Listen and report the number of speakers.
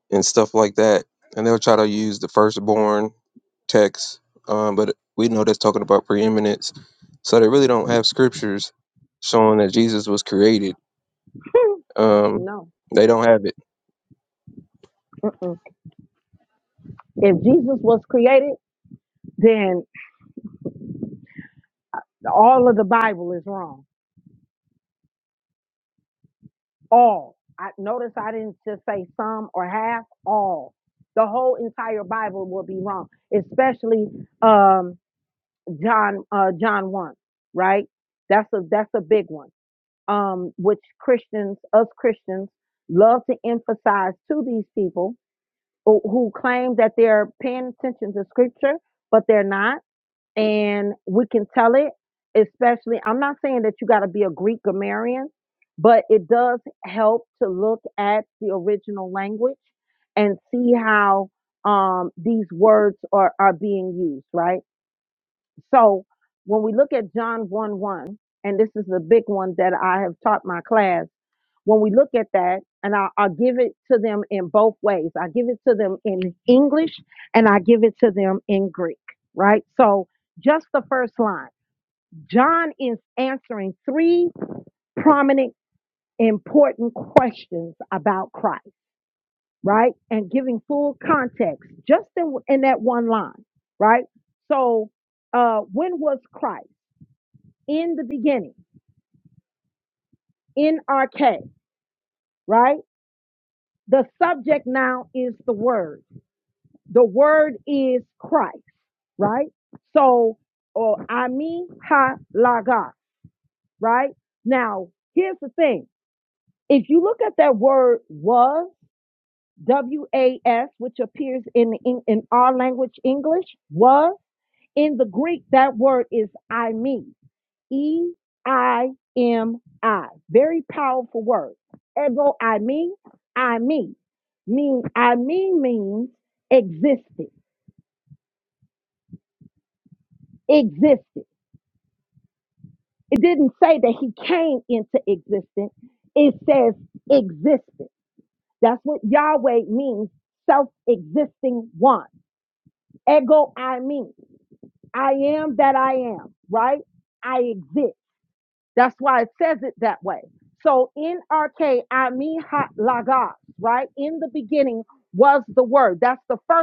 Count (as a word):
two